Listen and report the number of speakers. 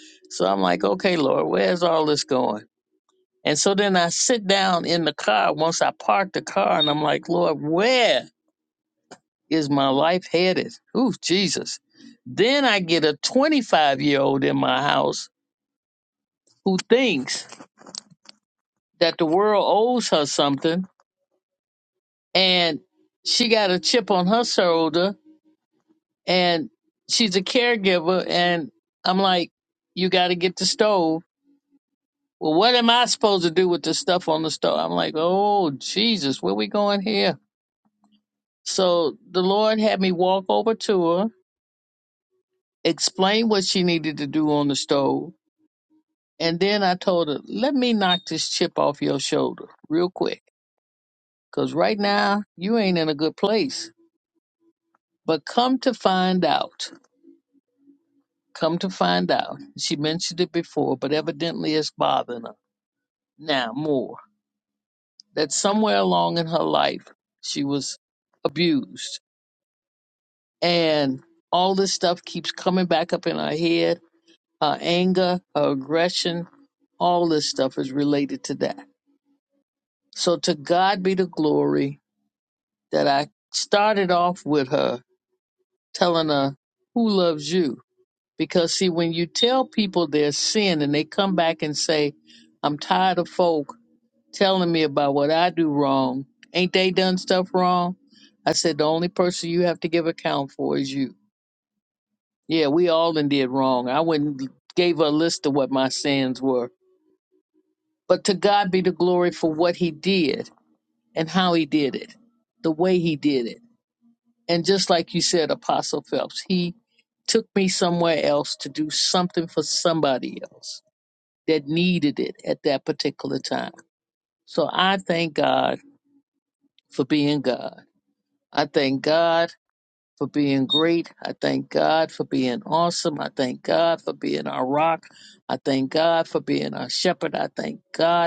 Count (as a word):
one